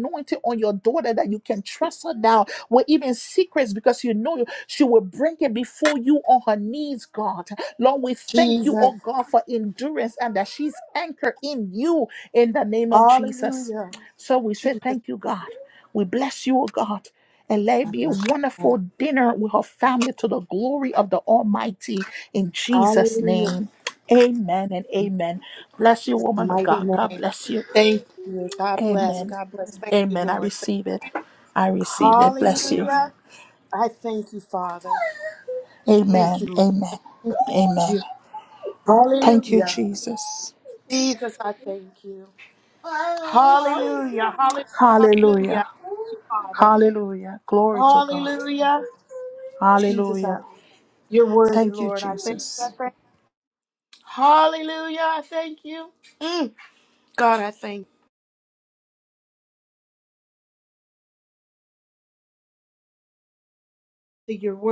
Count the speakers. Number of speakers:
2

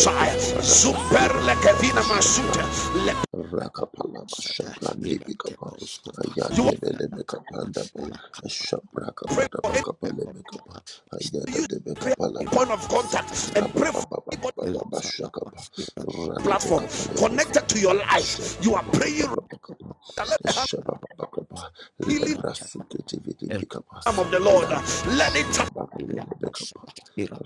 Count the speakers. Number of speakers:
3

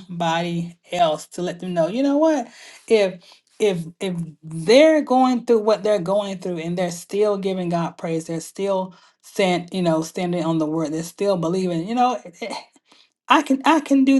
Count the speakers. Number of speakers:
1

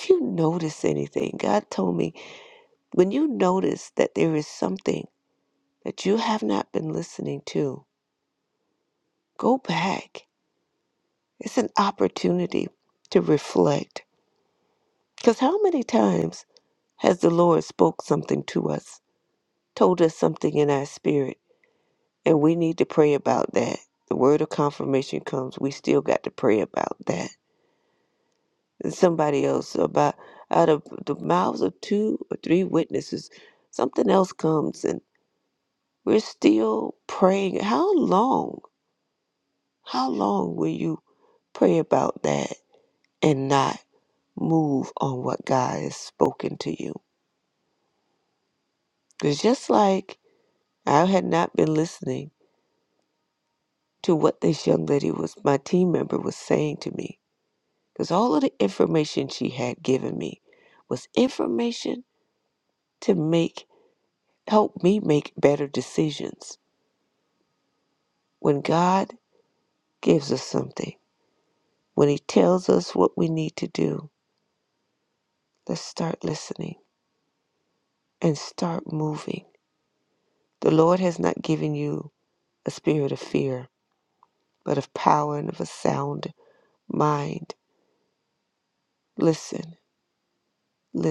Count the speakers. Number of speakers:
1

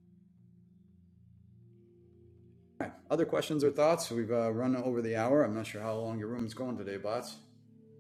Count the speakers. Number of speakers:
1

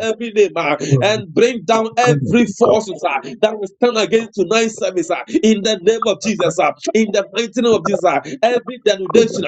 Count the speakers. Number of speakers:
1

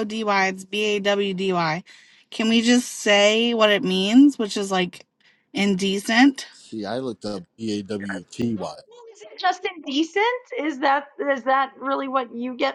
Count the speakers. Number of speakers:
3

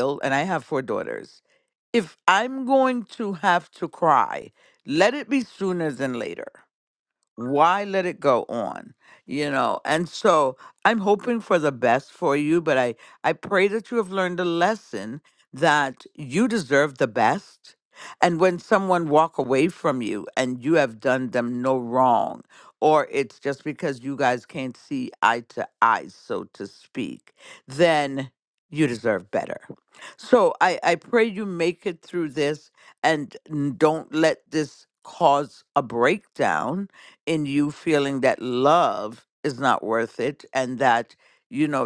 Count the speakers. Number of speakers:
1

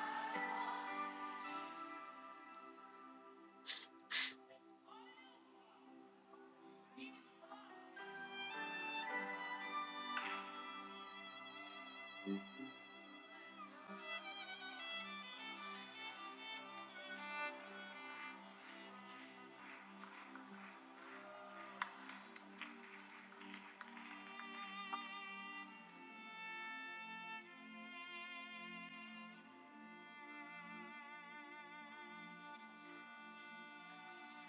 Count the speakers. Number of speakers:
0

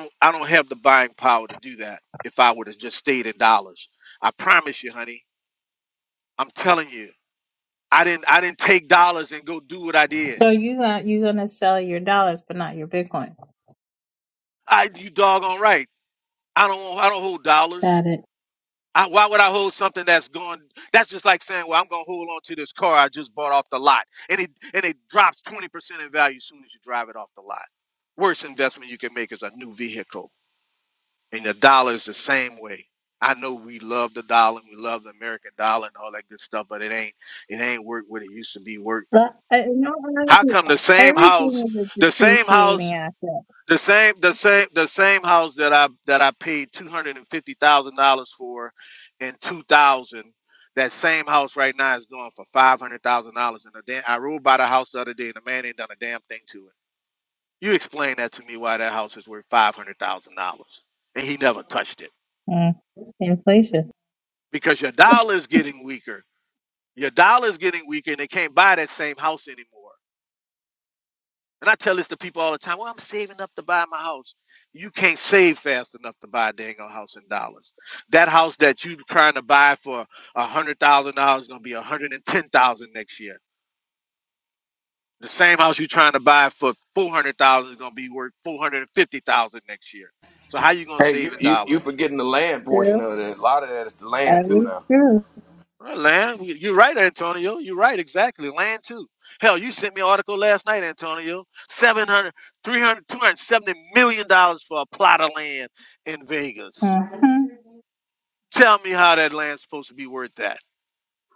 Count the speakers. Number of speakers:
3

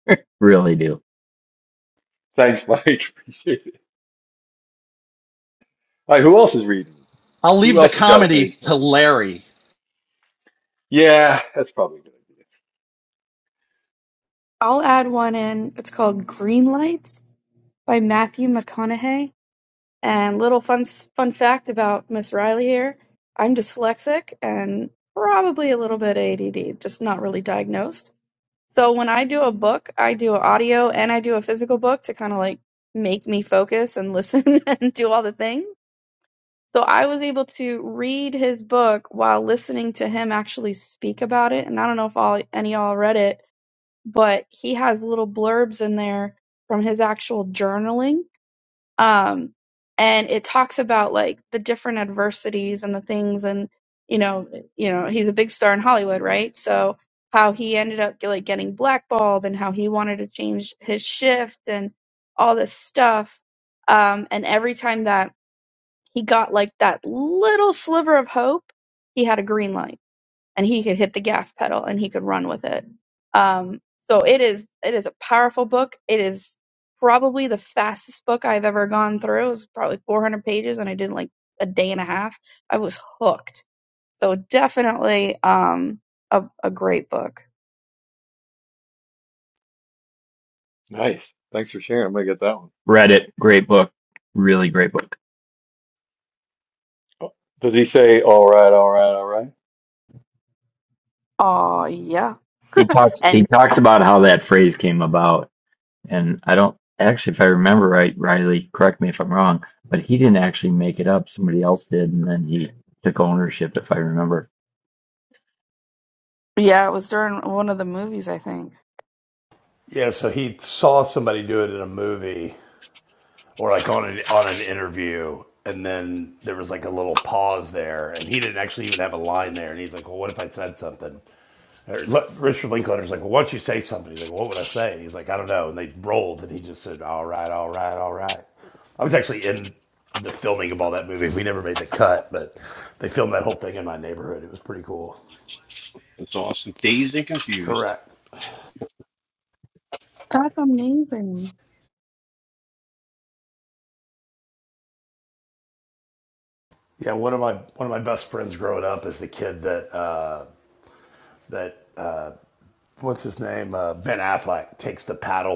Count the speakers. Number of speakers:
6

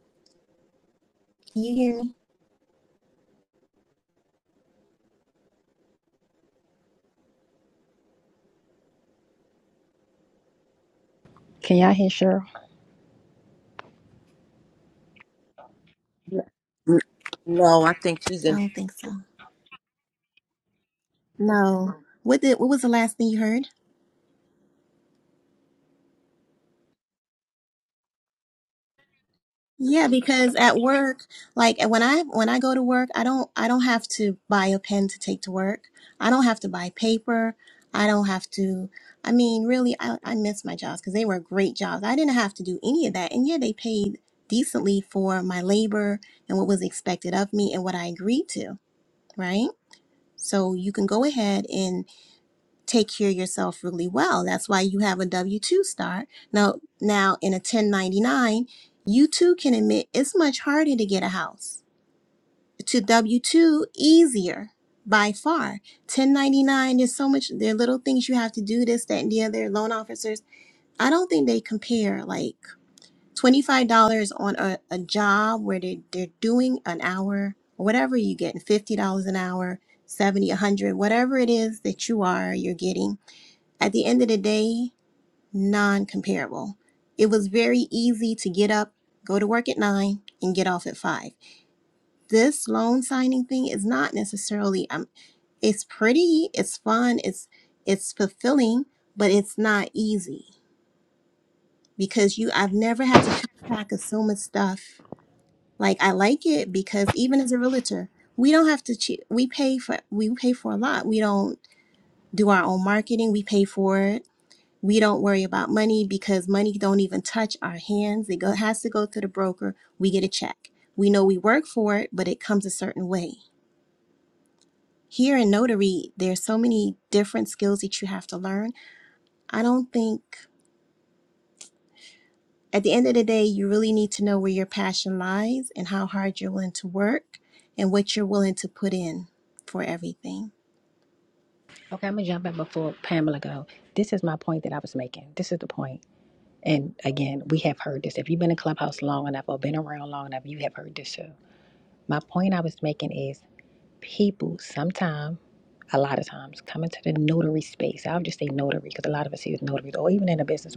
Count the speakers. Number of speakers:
3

